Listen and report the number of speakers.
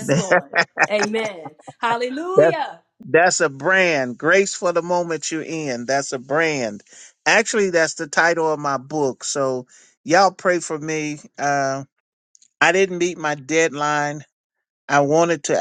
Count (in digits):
2